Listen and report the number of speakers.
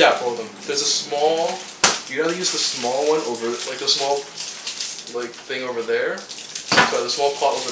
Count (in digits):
1